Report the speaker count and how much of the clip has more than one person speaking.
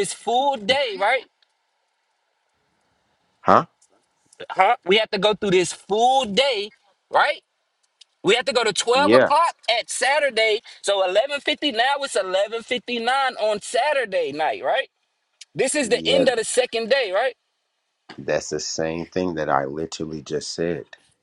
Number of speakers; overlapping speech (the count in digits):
2, about 4%